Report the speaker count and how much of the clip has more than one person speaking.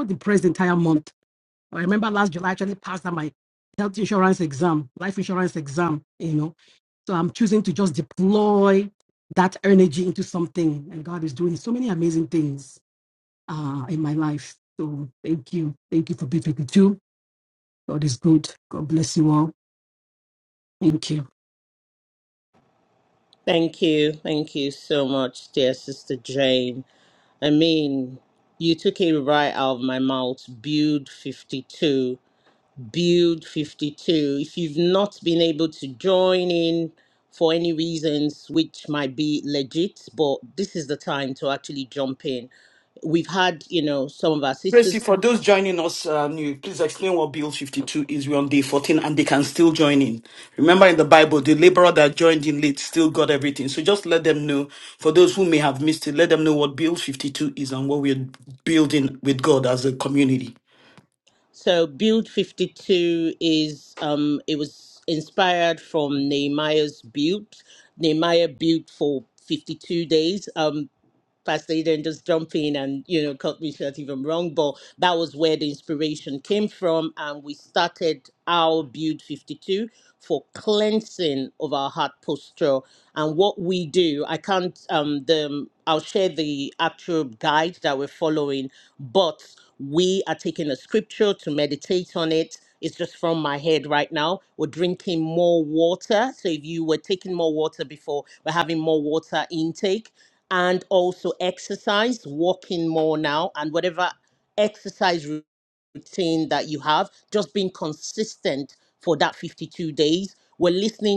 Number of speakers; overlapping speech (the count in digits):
3, under 1%